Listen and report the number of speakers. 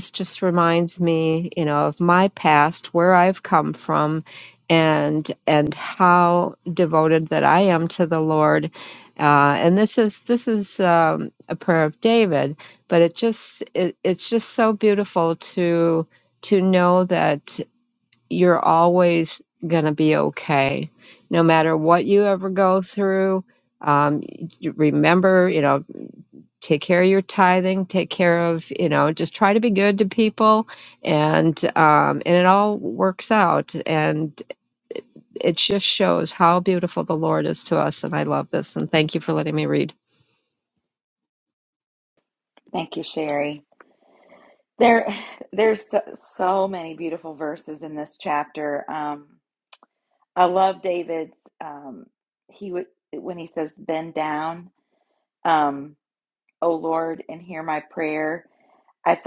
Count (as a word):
two